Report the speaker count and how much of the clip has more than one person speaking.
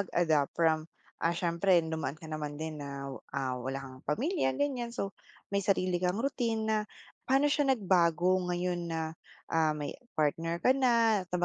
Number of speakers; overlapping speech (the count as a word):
one, no overlap